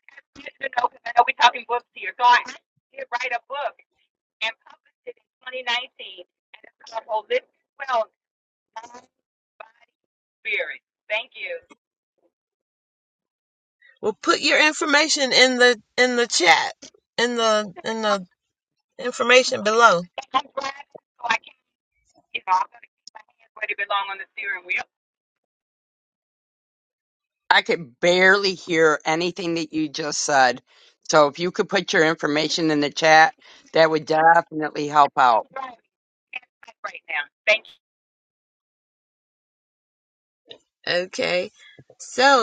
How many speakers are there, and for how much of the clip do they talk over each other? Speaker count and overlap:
three, about 1%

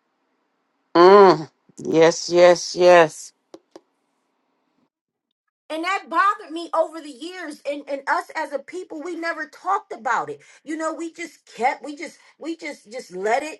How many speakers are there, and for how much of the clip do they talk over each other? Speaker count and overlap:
two, no overlap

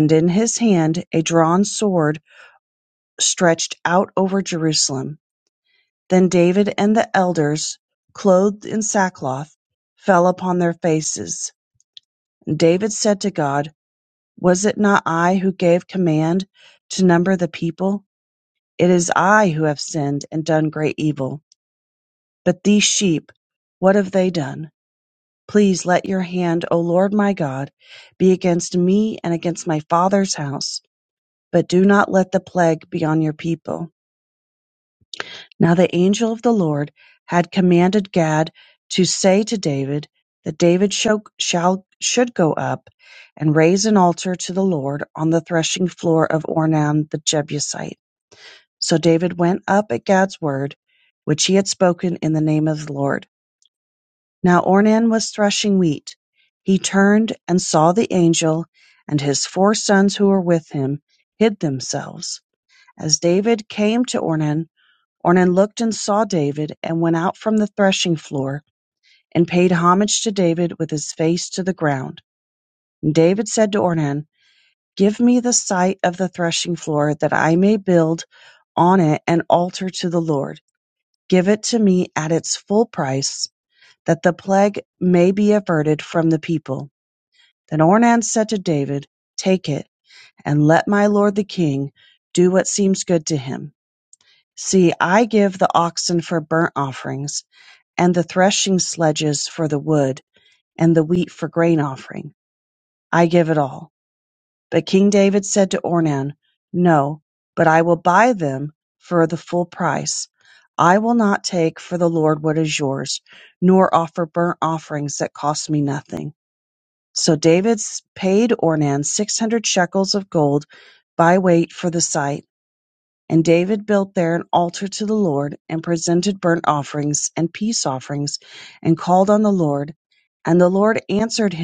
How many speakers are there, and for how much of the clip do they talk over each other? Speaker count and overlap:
one, no overlap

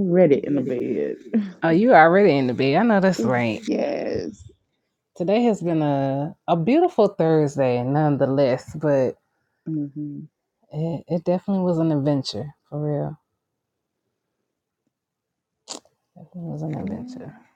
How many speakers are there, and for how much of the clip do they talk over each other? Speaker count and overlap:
two, about 2%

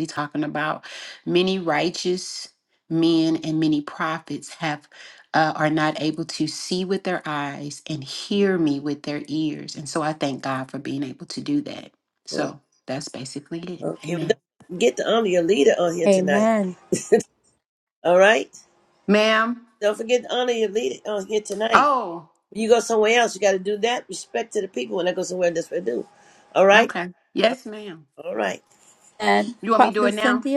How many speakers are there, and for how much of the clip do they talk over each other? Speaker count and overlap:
three, about 7%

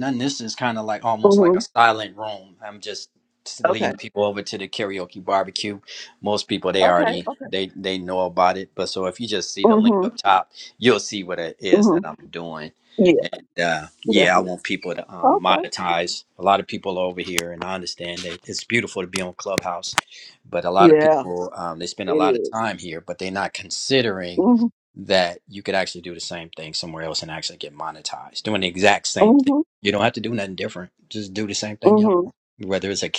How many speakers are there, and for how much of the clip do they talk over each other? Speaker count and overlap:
two, about 14%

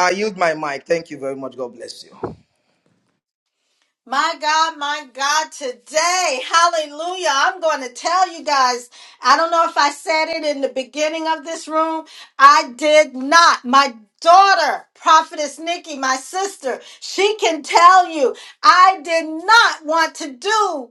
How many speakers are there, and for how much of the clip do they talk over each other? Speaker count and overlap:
two, no overlap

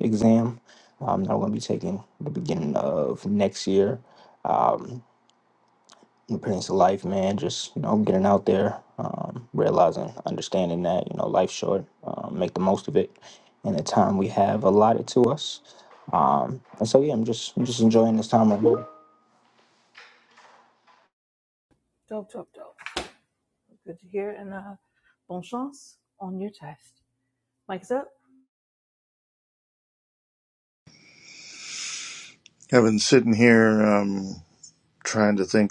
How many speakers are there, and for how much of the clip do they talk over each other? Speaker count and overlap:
three, no overlap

